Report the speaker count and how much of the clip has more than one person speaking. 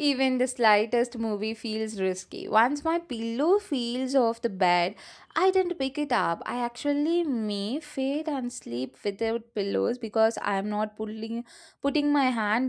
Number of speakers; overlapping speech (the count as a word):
one, no overlap